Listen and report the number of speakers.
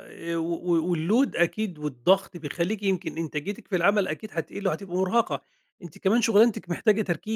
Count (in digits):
1